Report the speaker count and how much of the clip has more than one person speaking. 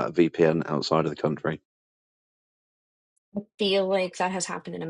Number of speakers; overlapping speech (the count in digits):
2, no overlap